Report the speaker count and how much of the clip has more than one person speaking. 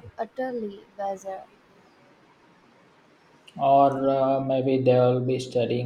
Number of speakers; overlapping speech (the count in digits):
2, no overlap